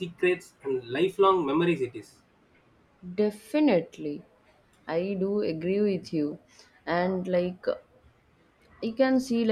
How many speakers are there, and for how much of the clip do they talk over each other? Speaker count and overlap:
two, no overlap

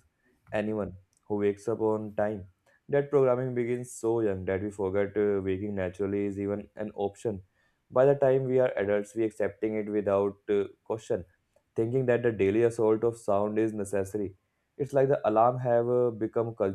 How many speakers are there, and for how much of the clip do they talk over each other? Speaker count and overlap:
one, no overlap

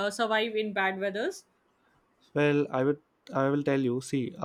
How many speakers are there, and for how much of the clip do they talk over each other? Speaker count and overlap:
two, no overlap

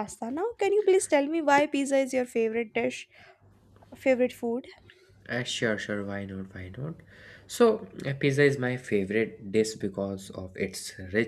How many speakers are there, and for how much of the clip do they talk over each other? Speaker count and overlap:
two, no overlap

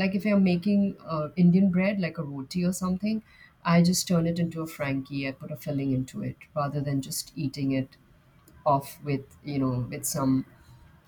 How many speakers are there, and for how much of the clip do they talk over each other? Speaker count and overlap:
one, no overlap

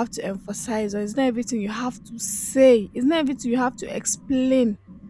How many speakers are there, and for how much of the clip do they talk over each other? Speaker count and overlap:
one, no overlap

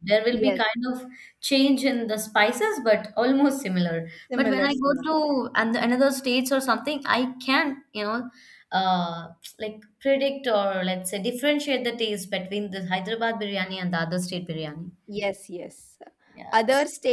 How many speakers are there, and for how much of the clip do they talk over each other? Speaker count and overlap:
two, about 8%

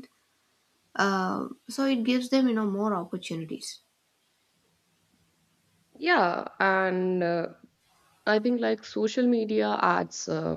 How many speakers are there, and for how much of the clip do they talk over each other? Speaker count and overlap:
two, no overlap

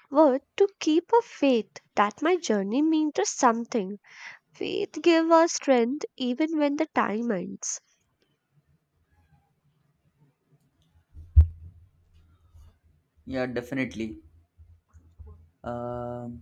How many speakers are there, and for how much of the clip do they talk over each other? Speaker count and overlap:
two, no overlap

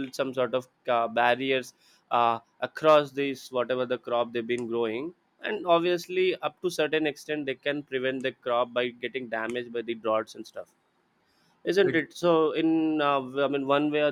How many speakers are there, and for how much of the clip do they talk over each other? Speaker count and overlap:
one, no overlap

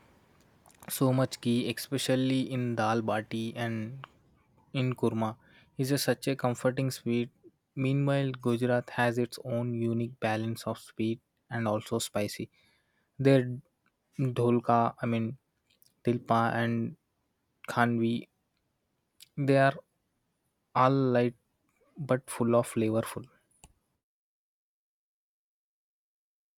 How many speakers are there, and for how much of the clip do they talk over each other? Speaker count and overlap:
one, no overlap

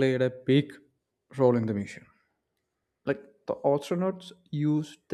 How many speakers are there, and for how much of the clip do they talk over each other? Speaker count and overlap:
one, no overlap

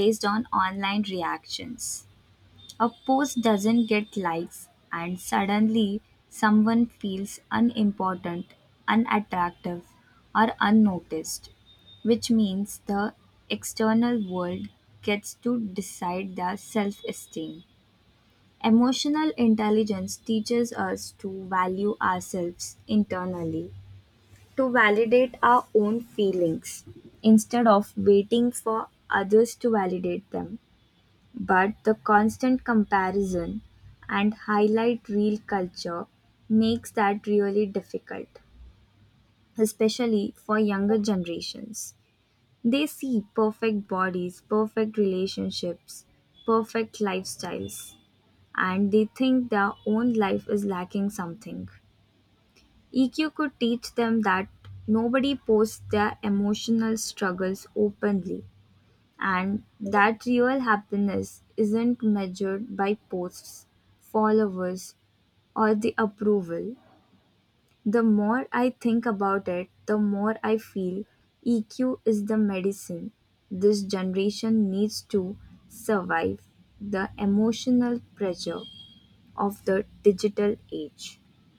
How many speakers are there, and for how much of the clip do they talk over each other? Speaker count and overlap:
one, no overlap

